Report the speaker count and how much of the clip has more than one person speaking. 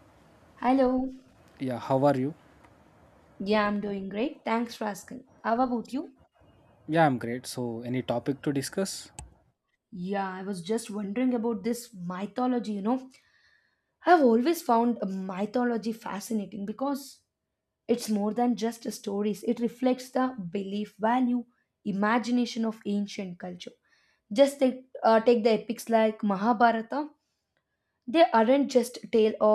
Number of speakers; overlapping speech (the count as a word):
two, no overlap